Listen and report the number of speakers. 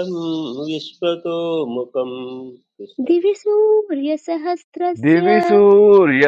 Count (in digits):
3